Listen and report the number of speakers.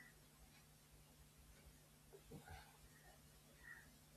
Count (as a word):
zero